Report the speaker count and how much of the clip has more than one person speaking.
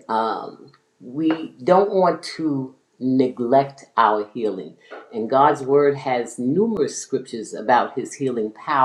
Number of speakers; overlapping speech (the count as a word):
one, no overlap